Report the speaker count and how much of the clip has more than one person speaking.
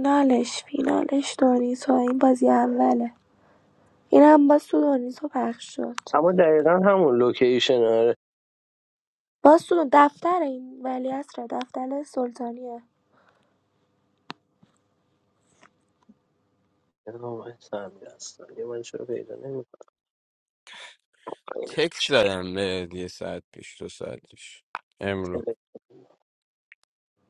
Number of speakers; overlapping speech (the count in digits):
3, no overlap